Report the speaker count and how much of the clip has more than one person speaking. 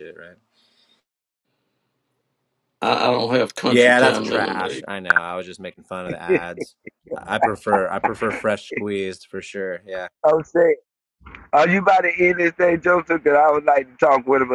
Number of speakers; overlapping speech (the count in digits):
3, about 8%